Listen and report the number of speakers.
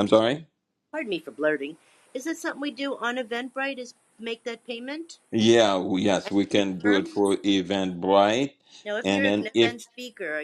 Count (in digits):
2